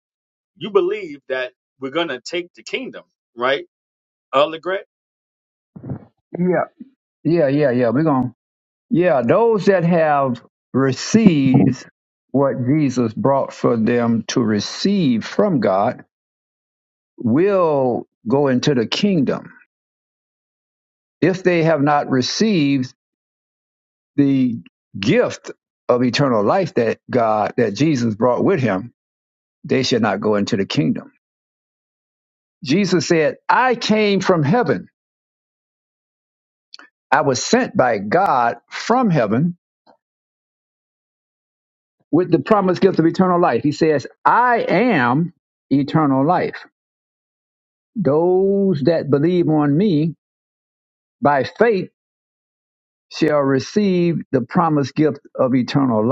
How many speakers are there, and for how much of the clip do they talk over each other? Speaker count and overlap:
2, no overlap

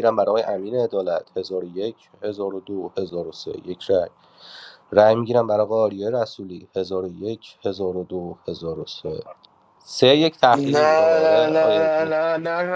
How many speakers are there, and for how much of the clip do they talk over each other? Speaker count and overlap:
2, about 11%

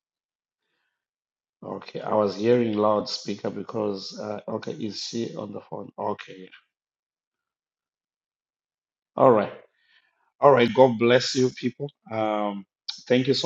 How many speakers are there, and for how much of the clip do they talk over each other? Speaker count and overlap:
1, no overlap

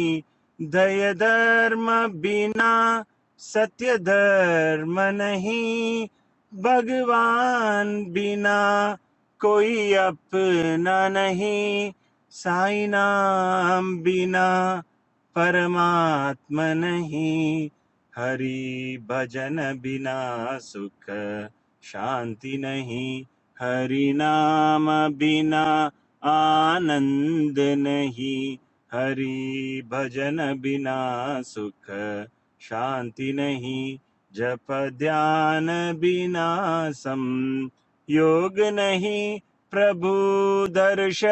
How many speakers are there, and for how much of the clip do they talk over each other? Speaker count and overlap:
1, no overlap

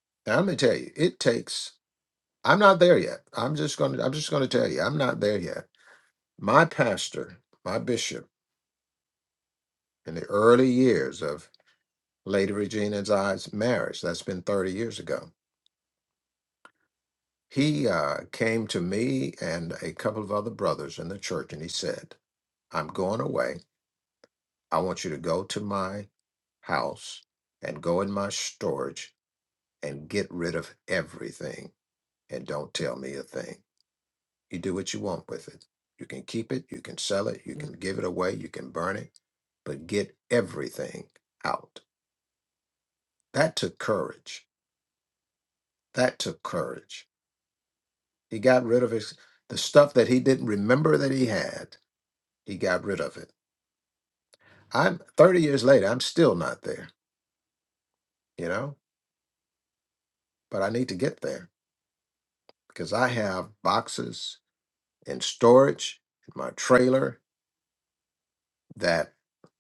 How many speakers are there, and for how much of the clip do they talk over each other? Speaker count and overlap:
1, no overlap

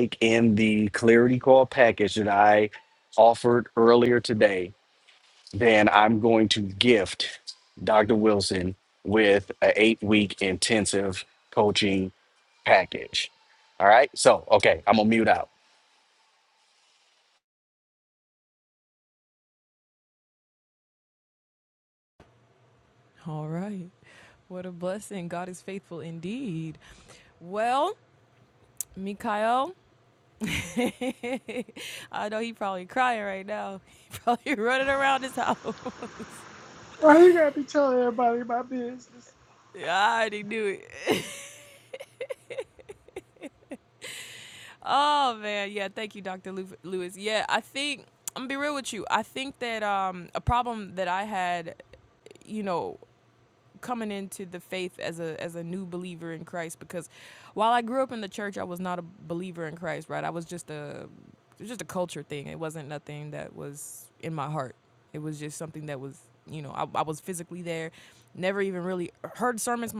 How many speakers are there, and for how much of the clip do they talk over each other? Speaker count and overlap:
3, no overlap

